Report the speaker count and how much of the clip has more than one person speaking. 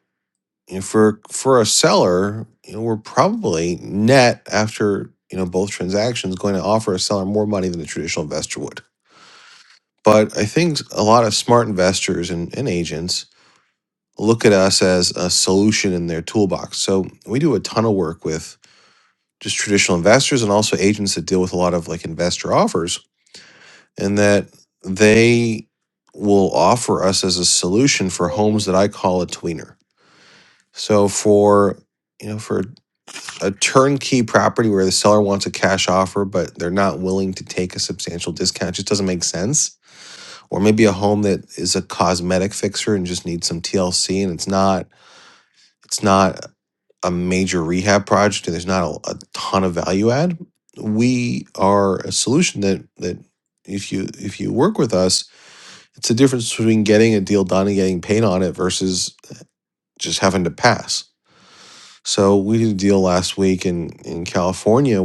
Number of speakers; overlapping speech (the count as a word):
one, no overlap